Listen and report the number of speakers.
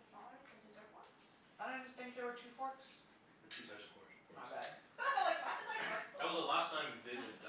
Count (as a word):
three